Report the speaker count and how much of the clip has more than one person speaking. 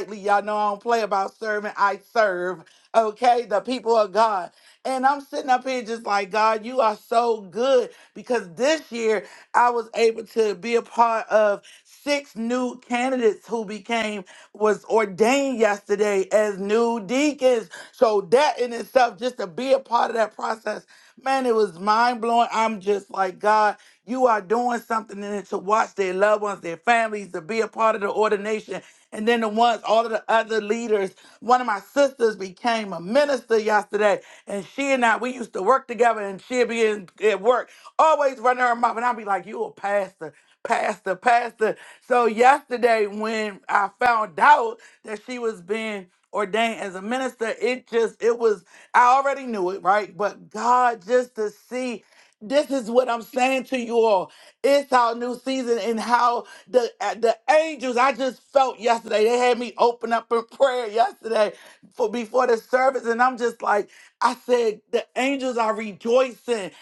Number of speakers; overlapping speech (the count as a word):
one, no overlap